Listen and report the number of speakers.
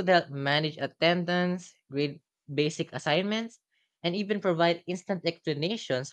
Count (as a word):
one